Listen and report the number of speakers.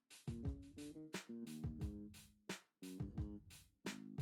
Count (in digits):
0